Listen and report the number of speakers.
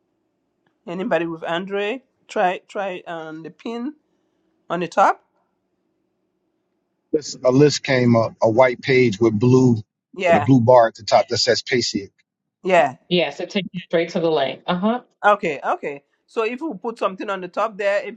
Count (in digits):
3